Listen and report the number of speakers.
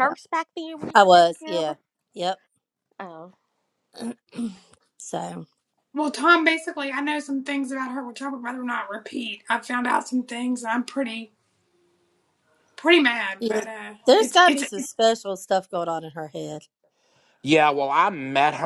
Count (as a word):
four